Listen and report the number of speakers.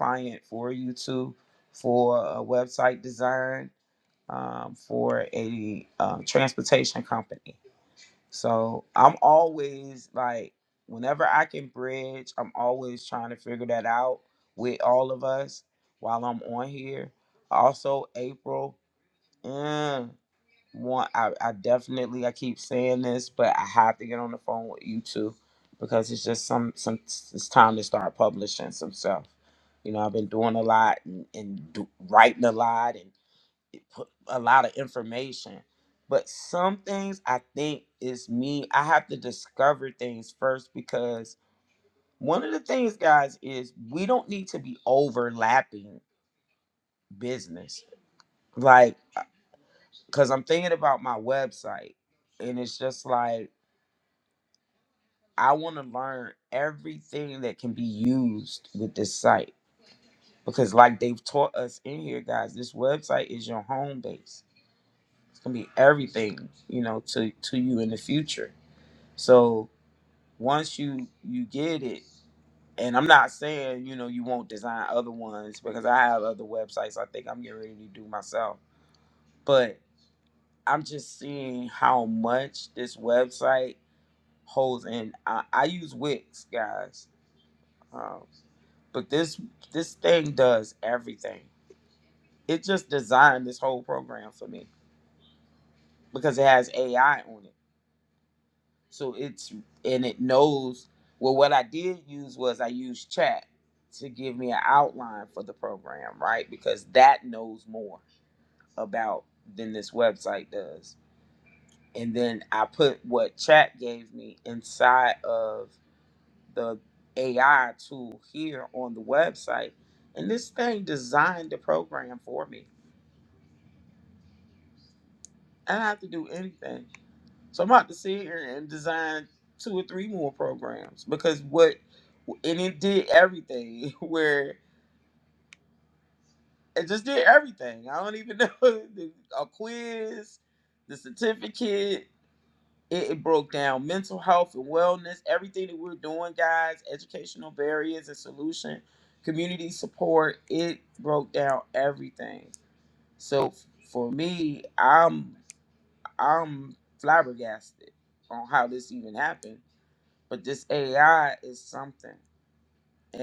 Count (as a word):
one